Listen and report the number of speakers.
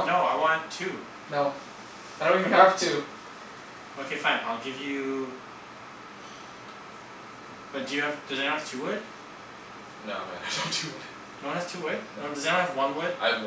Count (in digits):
3